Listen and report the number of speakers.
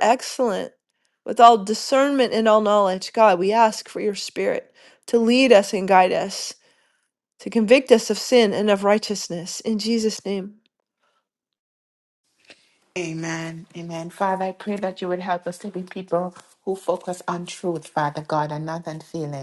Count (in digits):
2